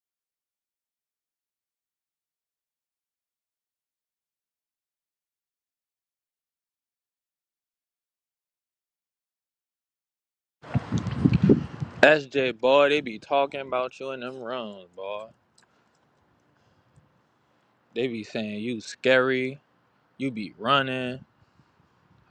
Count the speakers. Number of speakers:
one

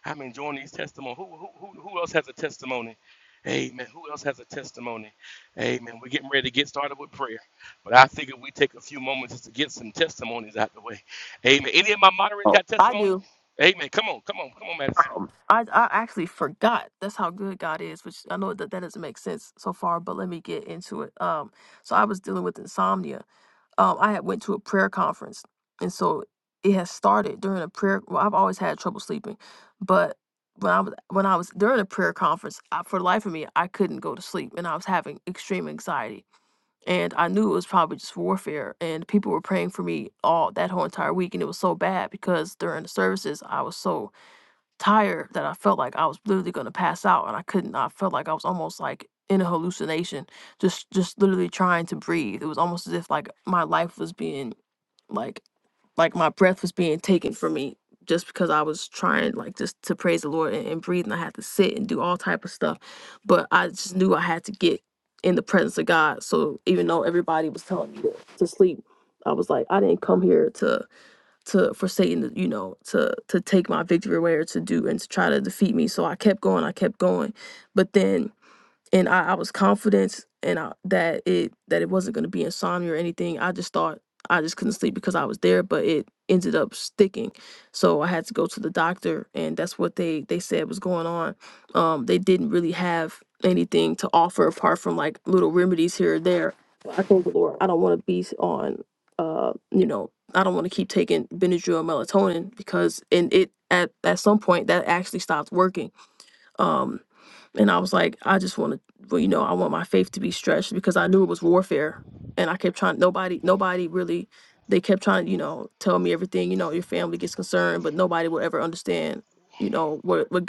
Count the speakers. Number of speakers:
two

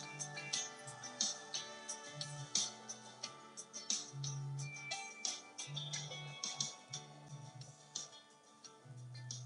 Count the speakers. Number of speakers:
zero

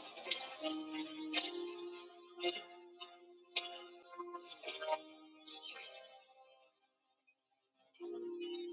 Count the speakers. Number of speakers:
zero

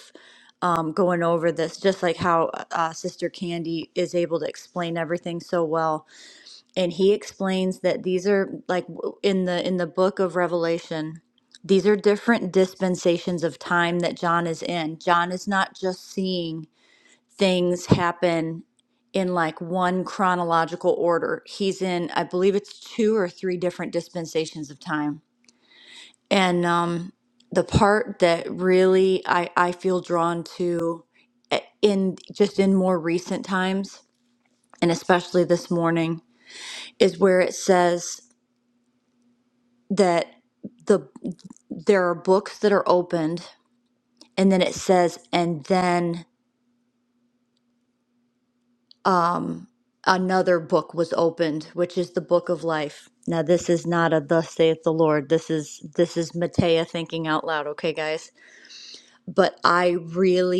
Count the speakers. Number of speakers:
one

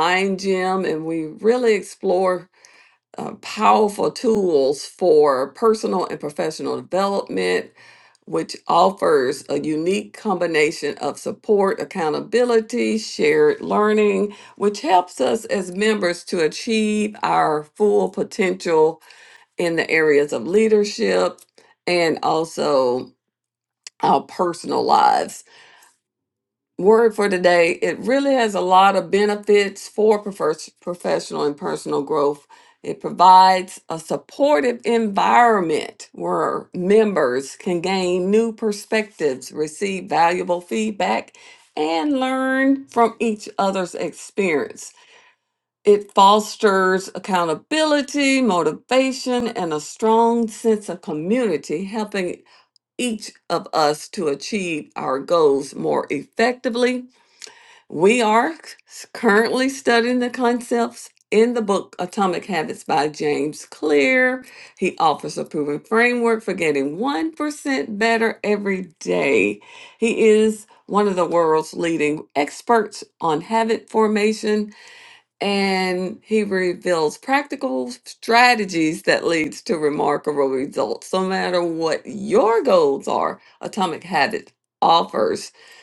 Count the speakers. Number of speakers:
one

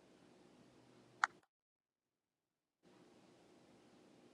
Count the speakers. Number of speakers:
zero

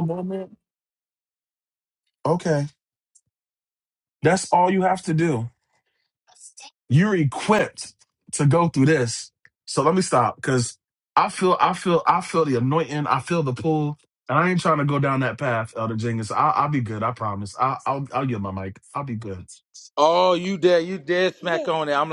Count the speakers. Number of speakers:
two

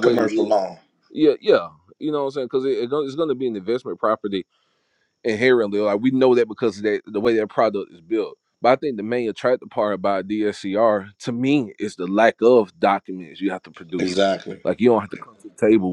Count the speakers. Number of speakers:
two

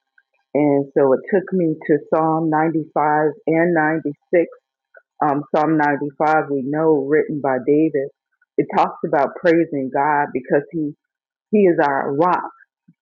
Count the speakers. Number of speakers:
one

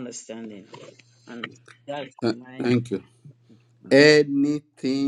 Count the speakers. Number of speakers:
two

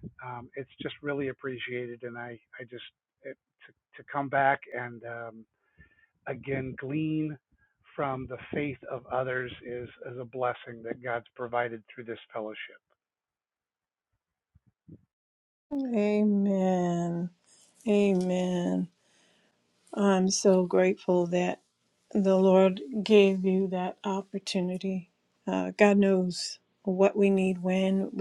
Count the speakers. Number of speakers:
two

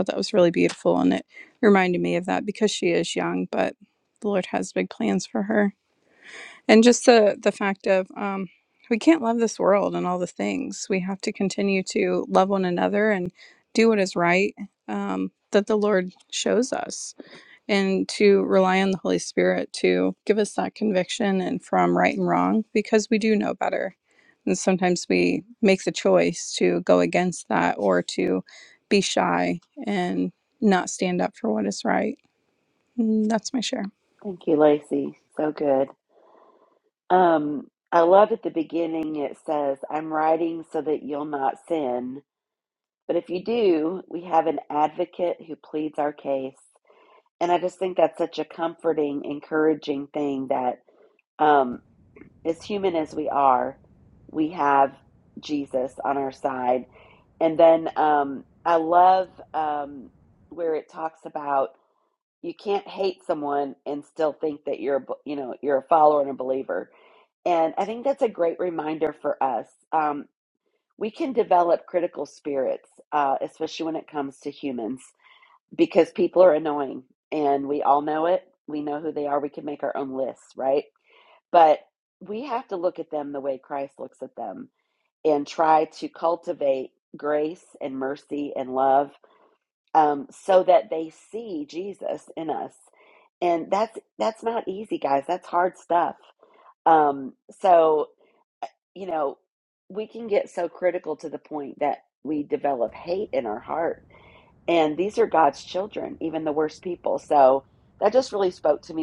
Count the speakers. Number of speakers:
two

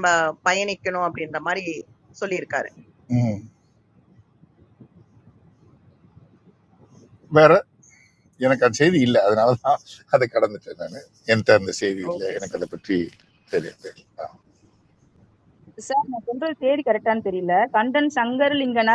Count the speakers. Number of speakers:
three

